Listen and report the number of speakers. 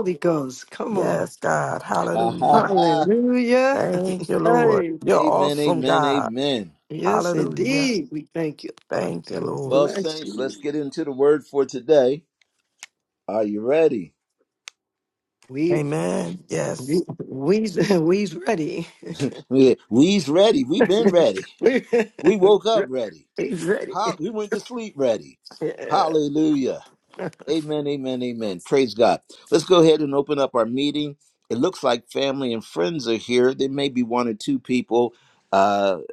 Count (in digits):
3